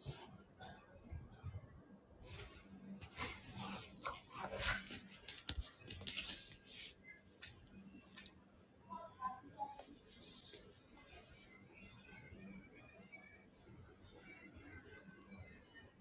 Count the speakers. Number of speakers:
0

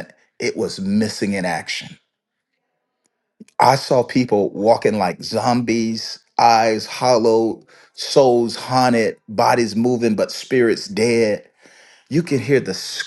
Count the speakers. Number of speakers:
1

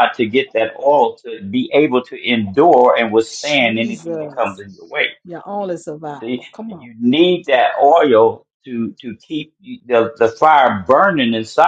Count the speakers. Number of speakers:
2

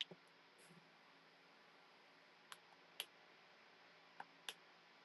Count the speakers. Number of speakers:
0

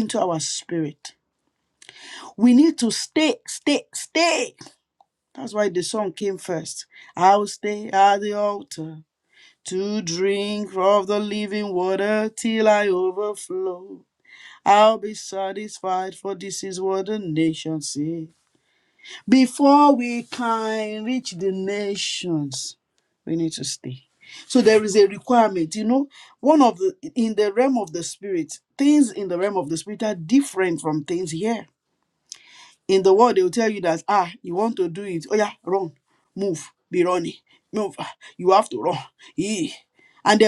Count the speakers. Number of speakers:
1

